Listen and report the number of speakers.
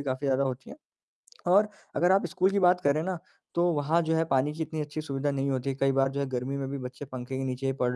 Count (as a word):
one